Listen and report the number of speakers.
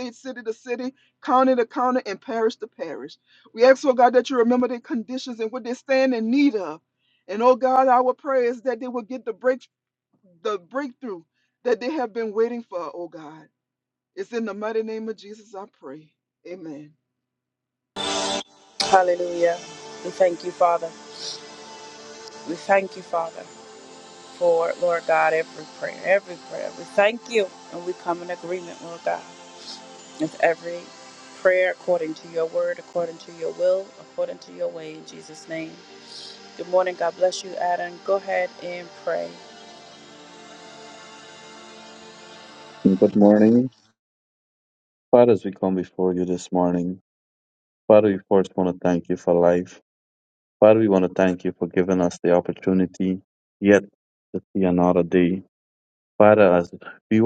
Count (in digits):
3